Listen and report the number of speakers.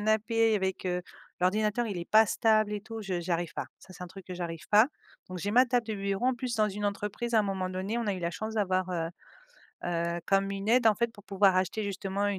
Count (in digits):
1